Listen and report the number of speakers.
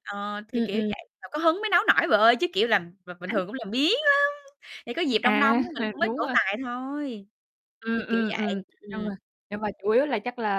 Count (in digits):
2